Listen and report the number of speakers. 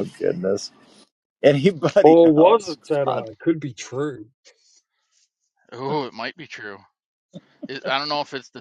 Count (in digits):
3